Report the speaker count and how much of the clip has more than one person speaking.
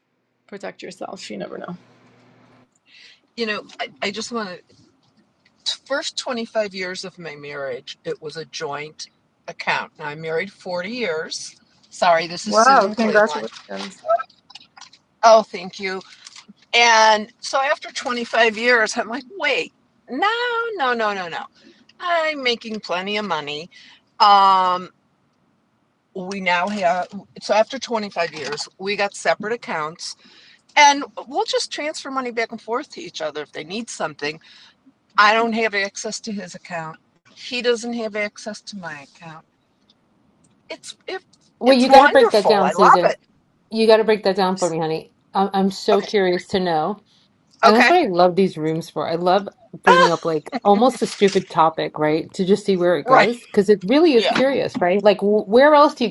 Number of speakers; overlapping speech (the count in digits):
3, about 7%